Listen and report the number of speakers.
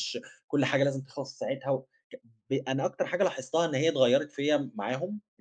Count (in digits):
1